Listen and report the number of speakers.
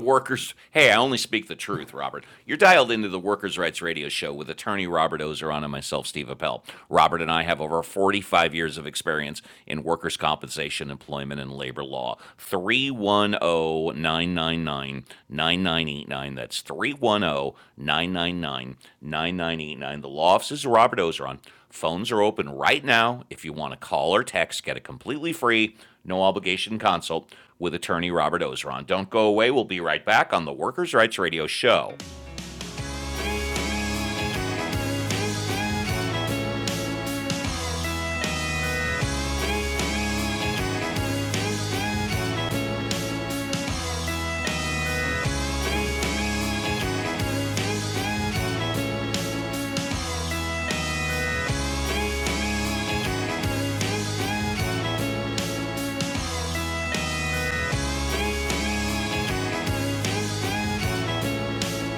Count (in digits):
1